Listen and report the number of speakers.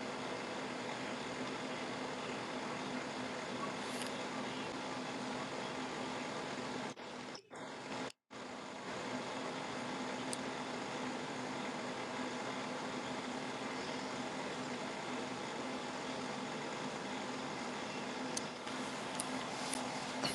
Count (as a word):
zero